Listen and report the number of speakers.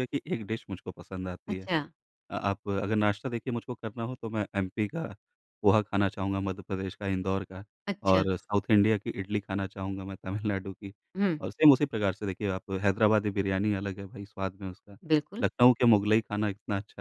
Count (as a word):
two